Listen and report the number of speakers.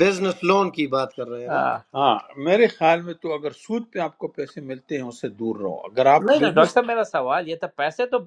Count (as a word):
three